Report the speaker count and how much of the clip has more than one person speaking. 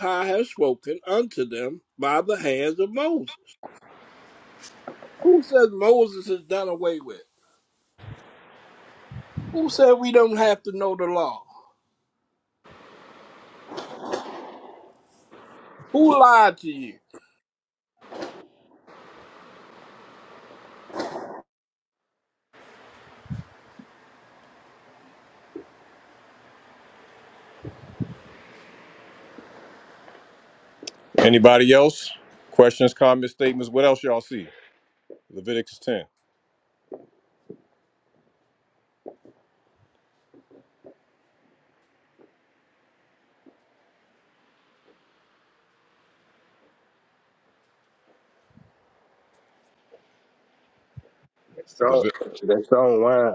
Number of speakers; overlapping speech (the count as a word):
three, no overlap